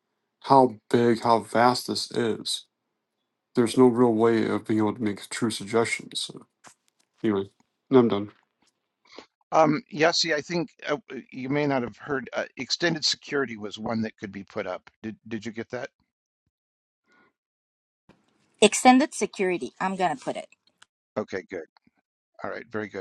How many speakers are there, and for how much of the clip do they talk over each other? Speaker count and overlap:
3, no overlap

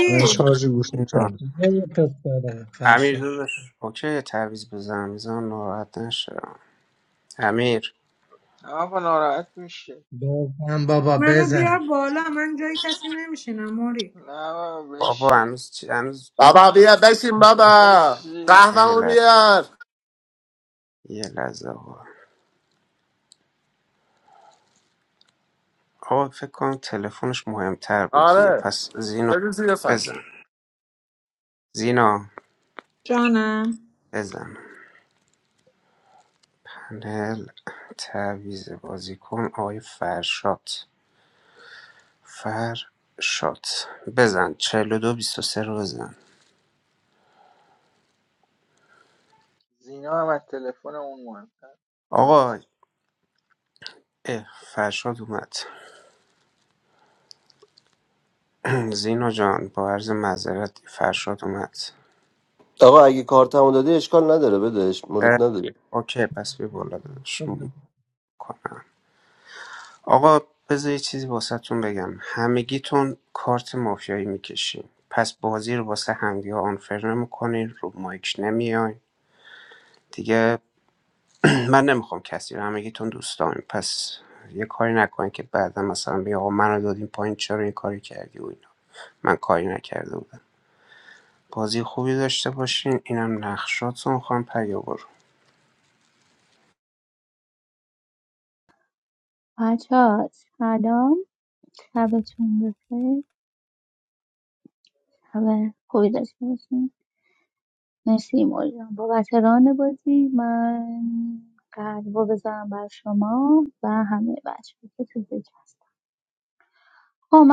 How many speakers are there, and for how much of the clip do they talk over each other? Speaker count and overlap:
8, about 4%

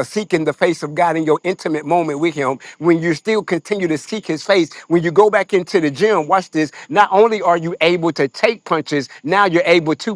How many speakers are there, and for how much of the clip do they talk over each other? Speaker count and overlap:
1, no overlap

